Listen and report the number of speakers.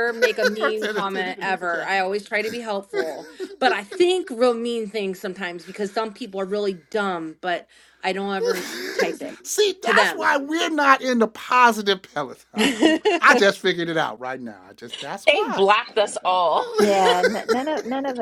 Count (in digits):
4